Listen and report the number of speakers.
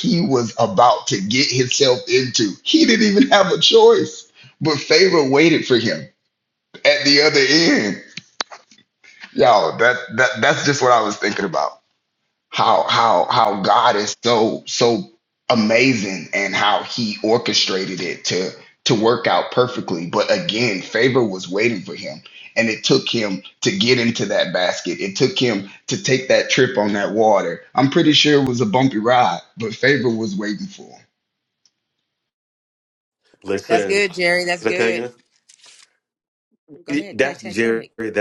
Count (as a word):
three